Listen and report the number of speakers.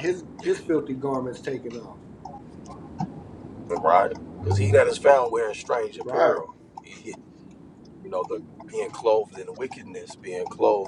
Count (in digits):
2